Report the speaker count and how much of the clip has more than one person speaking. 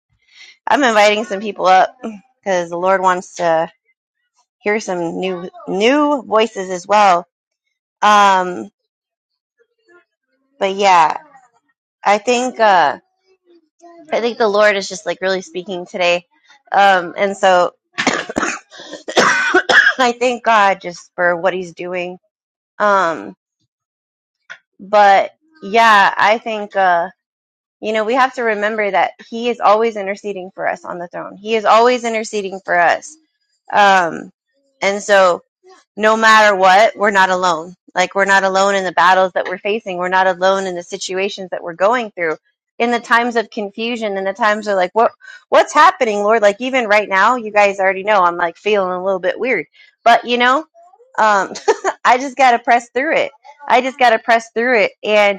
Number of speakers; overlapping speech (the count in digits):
1, no overlap